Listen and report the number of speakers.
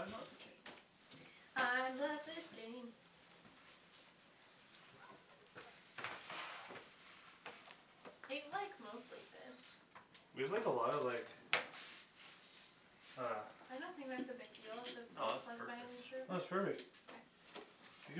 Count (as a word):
three